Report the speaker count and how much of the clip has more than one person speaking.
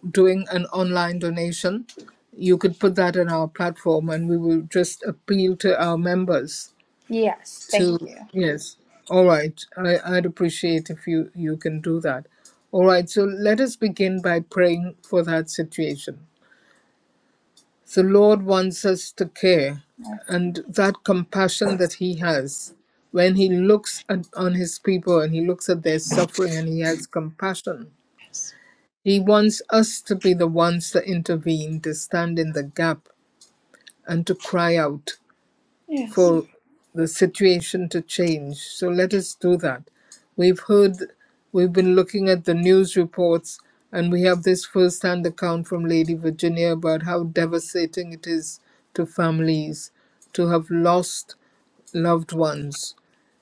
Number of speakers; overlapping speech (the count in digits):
2, about 2%